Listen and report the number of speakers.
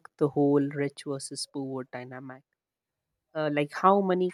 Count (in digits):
1